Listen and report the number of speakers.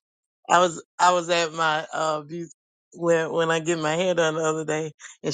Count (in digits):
1